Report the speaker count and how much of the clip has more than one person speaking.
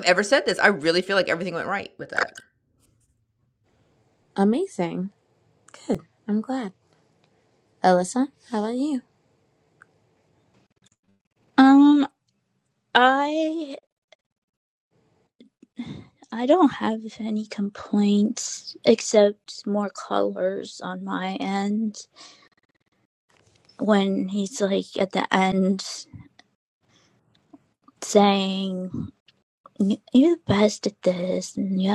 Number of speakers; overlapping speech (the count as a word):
three, no overlap